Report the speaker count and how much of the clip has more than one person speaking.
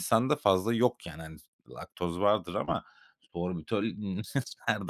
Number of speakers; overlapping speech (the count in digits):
1, no overlap